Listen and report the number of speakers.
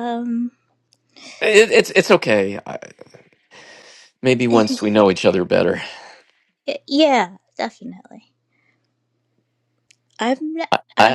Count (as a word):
two